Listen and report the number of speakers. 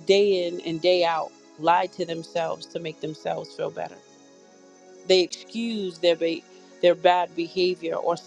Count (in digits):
1